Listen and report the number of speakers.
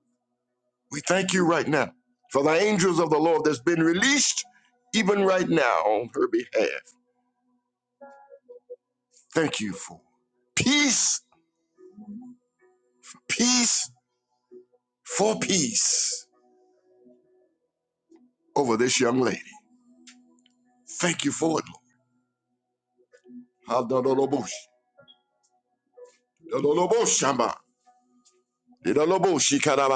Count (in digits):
1